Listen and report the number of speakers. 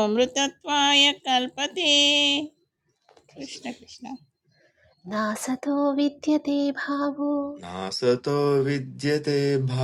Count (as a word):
three